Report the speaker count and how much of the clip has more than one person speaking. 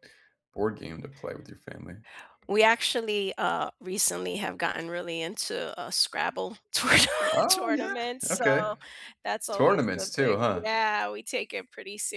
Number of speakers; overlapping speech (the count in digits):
2, about 20%